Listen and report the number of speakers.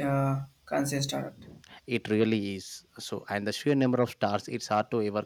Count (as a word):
two